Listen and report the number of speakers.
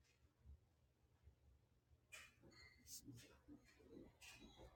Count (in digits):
0